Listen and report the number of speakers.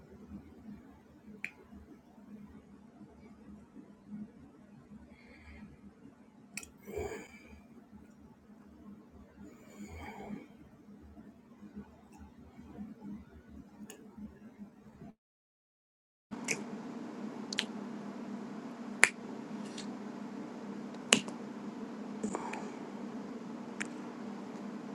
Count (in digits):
0